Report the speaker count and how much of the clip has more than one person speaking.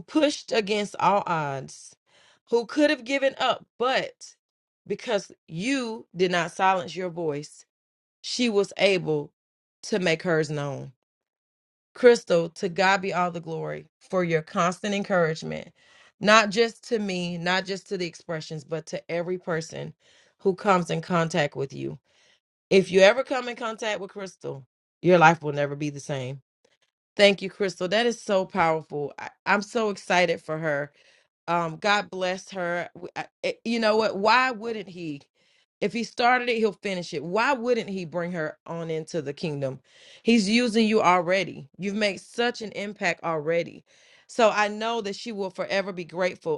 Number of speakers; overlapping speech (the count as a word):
one, no overlap